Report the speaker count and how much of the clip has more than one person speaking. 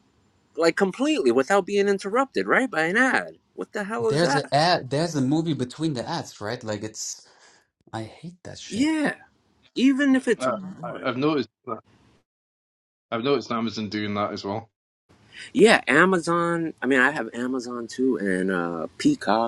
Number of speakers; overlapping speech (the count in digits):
3, about 7%